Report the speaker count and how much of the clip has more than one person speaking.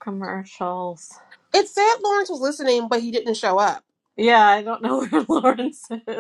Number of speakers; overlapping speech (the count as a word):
two, no overlap